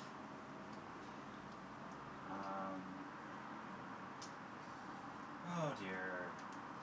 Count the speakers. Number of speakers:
1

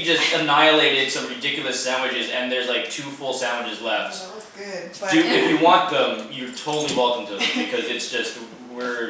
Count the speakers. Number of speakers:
1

